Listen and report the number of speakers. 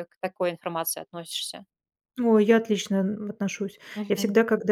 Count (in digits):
2